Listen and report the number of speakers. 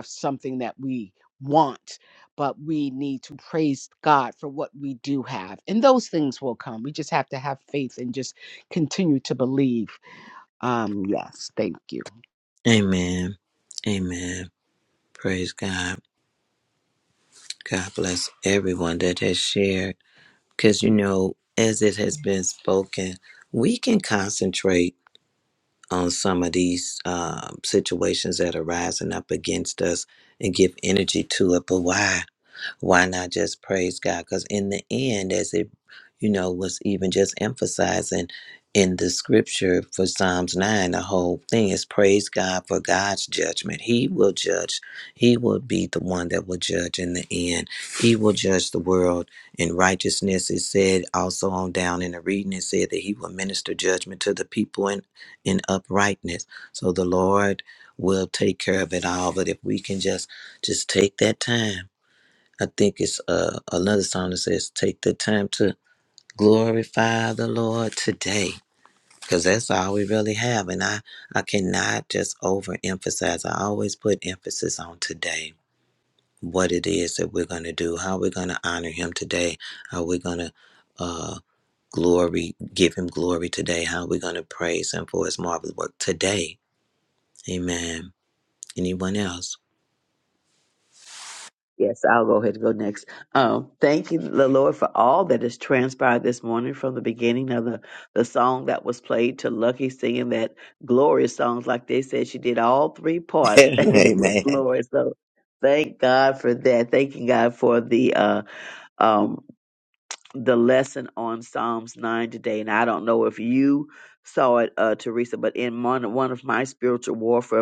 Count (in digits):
3